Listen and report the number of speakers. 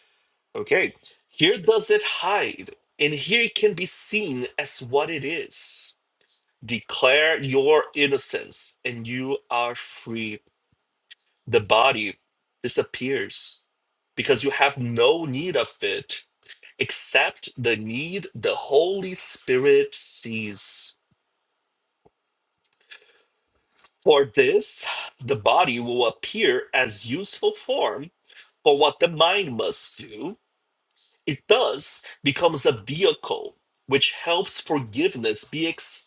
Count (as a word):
one